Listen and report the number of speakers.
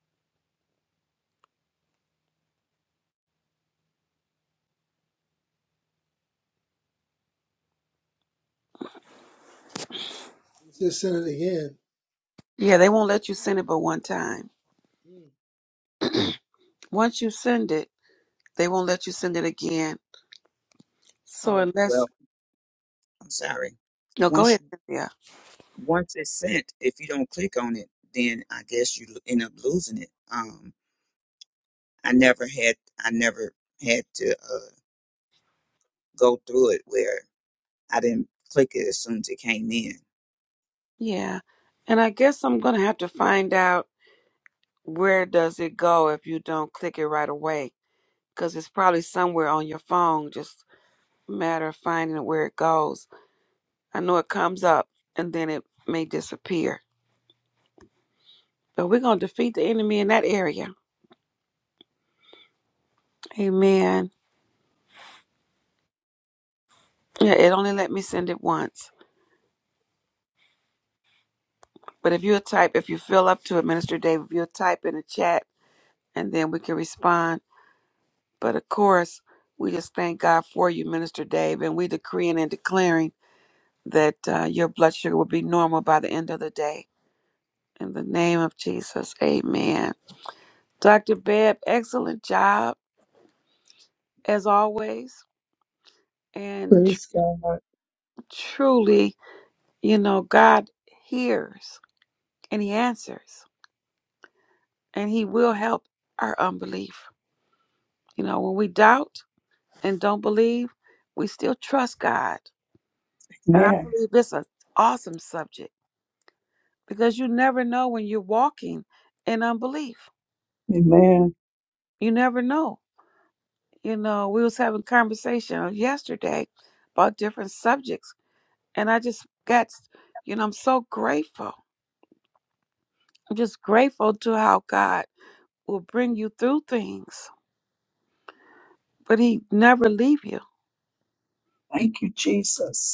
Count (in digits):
4